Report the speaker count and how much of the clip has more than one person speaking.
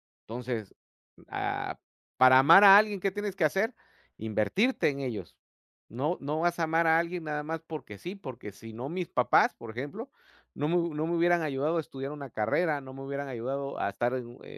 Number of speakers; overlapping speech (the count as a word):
one, no overlap